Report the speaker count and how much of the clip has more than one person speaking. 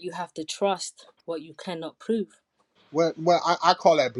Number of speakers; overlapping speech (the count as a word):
two, no overlap